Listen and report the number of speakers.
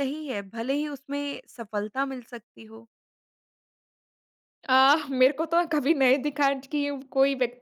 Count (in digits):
2